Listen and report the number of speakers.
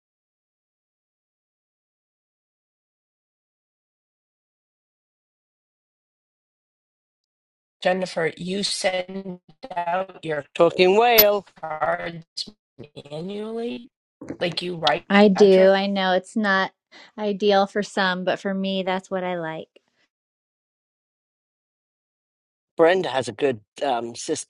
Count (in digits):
3